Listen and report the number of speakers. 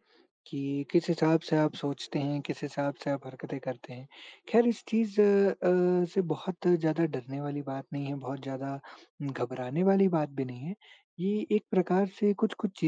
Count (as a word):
one